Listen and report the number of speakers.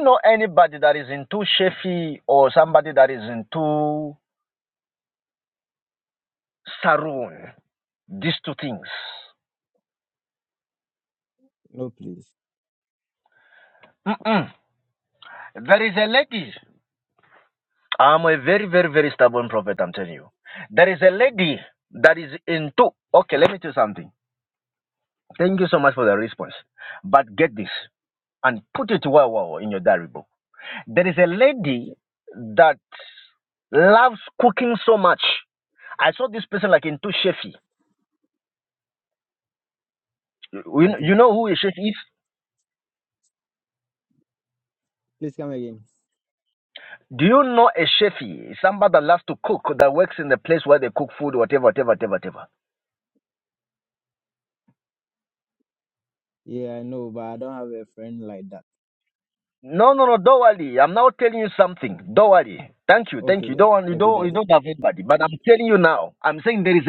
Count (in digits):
2